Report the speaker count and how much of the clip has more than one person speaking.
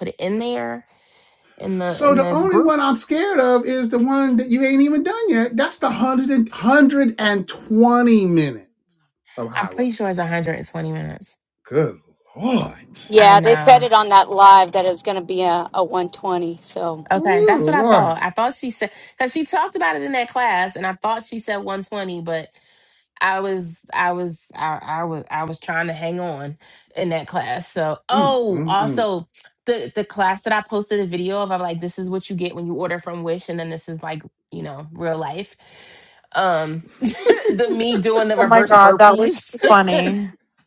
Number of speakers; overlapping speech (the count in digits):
4, about 12%